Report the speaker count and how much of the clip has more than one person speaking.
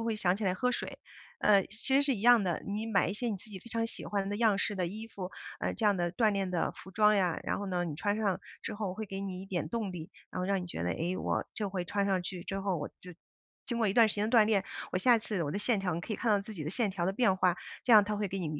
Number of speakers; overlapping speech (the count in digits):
1, no overlap